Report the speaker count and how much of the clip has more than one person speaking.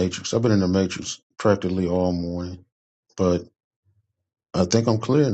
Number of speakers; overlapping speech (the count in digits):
1, no overlap